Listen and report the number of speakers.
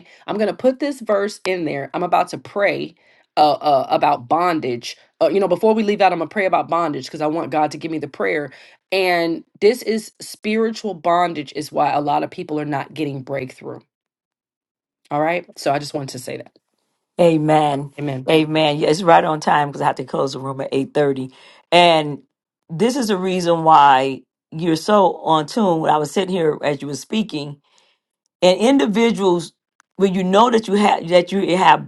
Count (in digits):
2